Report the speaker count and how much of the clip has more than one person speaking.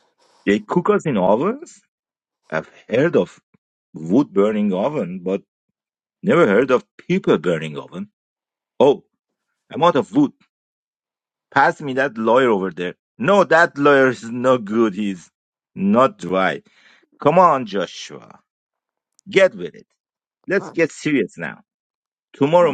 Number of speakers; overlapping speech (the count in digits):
1, no overlap